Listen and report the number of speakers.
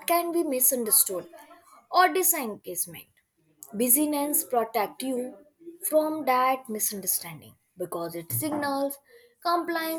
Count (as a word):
one